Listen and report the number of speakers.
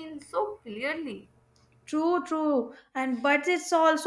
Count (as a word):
two